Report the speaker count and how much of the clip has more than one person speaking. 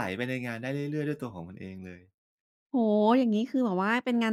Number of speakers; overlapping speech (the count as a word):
two, no overlap